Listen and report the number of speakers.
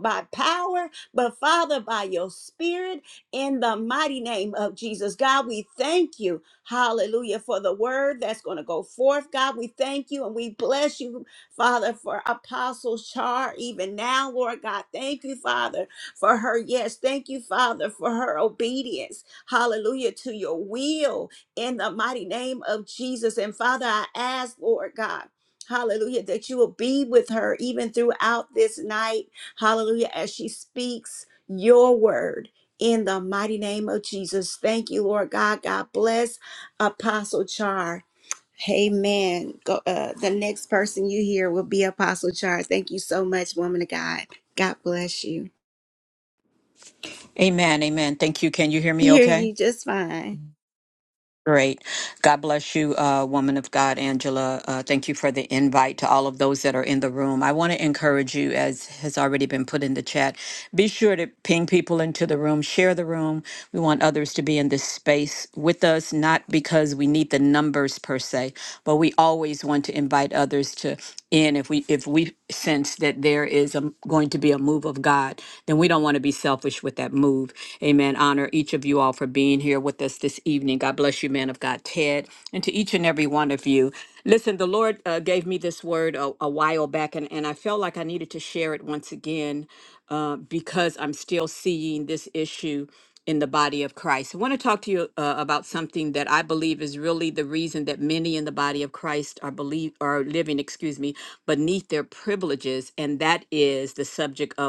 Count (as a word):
two